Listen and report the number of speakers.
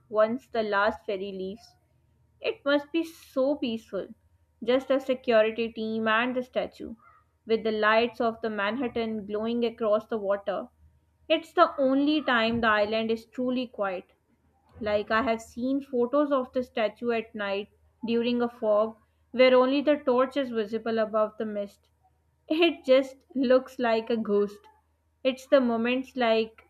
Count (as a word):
one